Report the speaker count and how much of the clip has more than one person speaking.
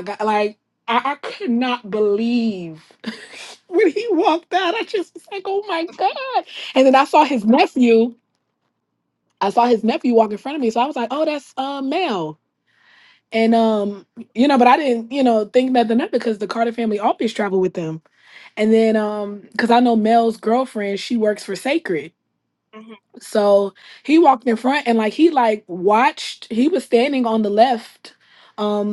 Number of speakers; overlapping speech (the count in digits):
1, no overlap